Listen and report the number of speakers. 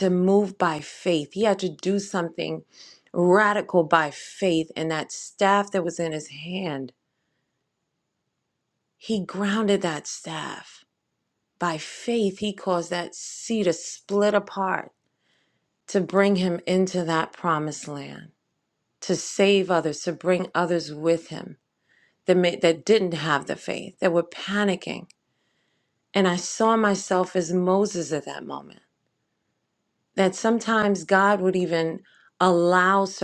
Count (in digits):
1